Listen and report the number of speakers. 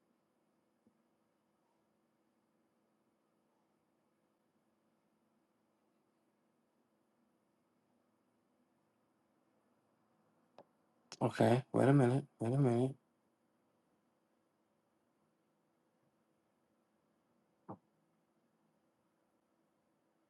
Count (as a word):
one